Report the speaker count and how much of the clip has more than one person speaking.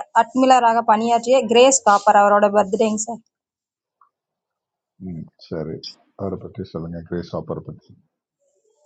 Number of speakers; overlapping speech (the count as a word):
two, no overlap